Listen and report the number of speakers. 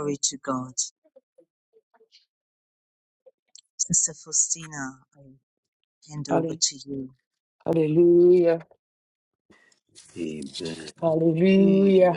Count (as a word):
three